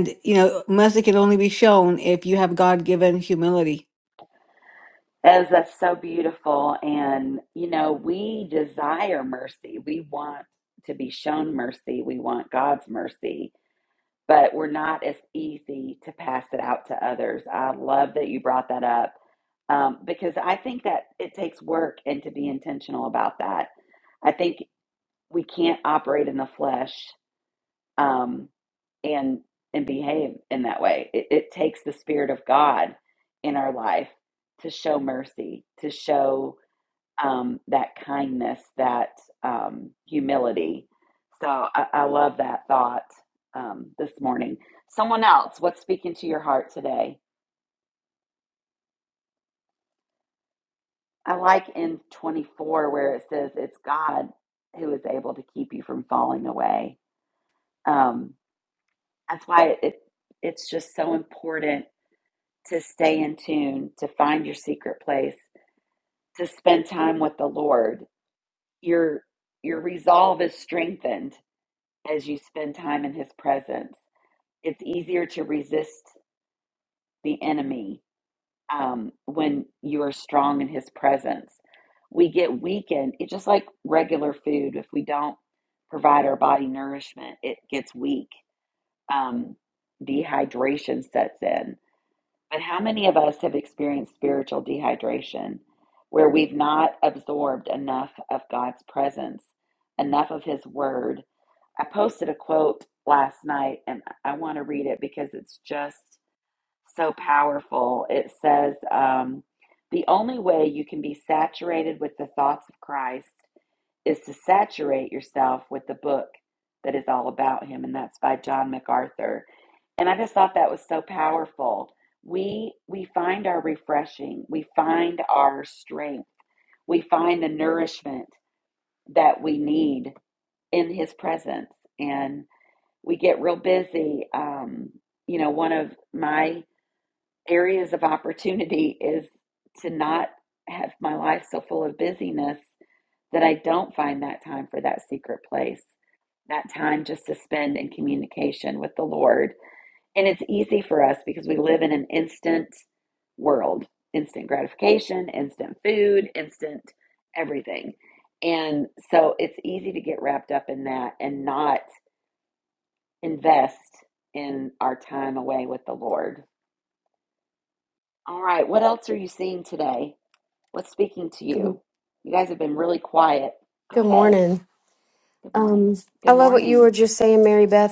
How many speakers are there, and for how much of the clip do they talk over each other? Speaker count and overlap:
three, about 1%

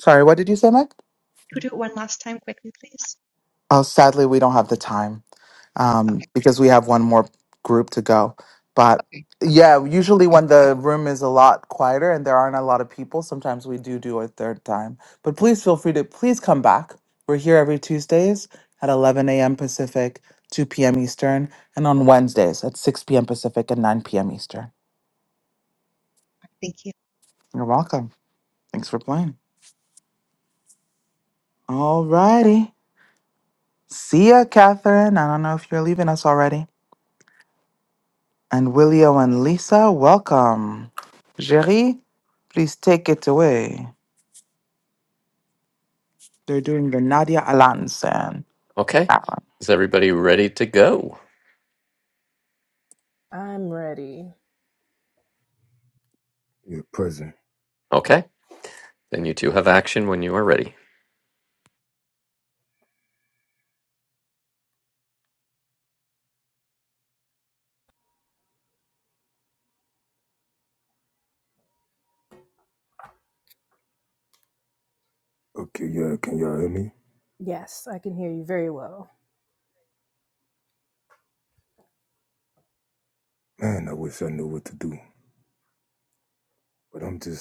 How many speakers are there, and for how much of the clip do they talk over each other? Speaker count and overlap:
five, under 1%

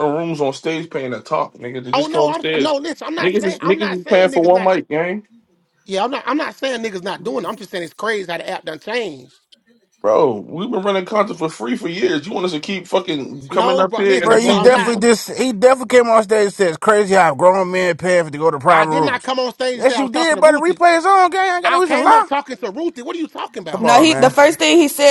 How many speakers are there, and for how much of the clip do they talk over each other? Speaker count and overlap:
four, about 26%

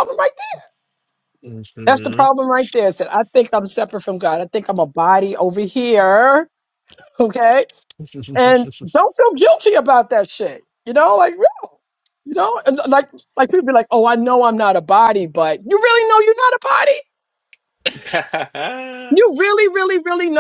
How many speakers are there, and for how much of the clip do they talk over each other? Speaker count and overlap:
two, about 2%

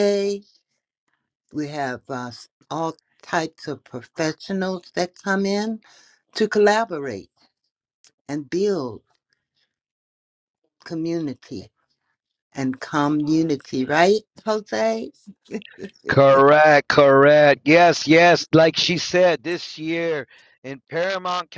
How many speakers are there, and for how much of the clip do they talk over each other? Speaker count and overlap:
two, no overlap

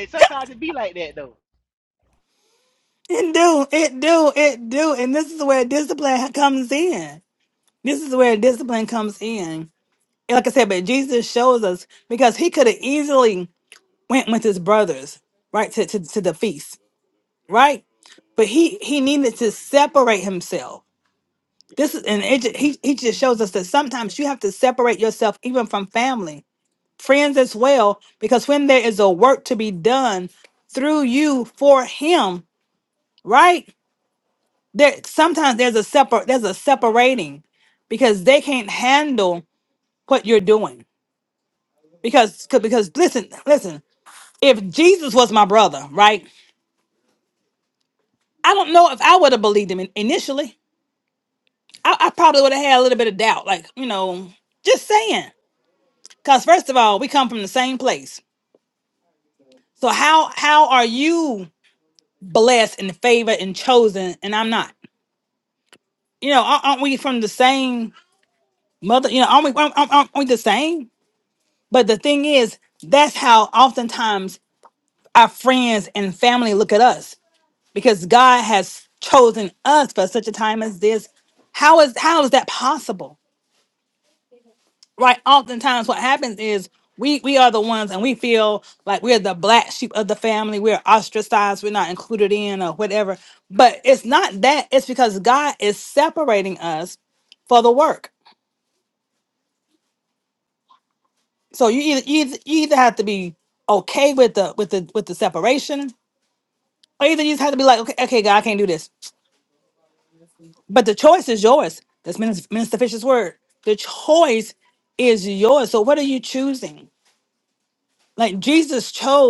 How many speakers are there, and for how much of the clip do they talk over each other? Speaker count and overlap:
two, no overlap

